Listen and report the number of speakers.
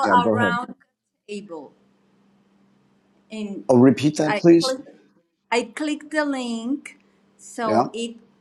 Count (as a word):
two